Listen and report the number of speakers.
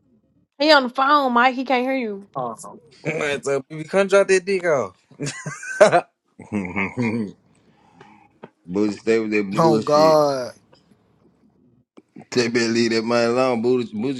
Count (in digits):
4